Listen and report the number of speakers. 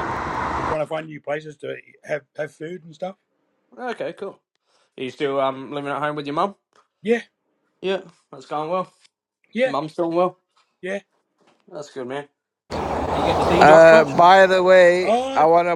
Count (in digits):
3